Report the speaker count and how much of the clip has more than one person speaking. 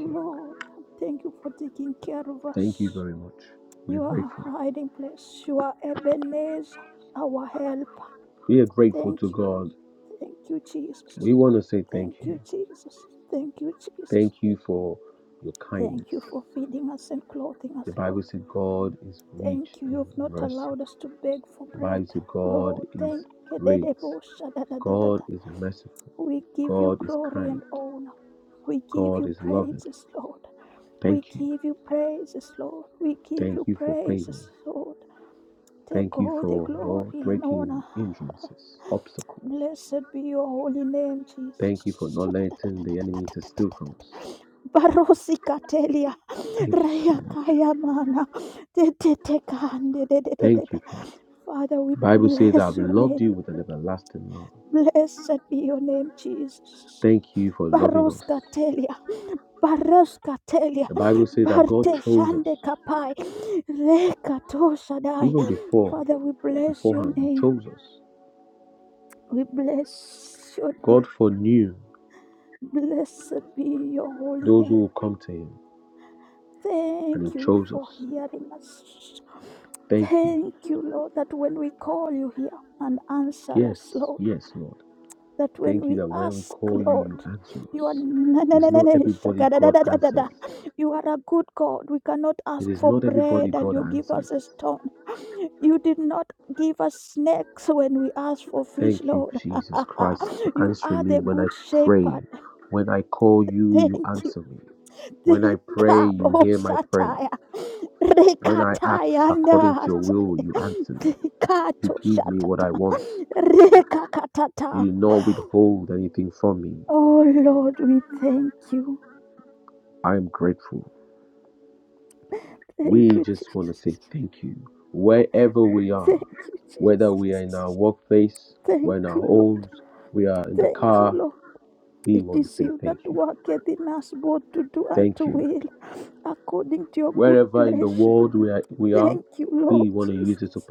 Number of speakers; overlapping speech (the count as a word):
two, about 25%